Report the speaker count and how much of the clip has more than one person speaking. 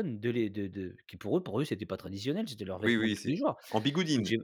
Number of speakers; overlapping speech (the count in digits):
2, about 17%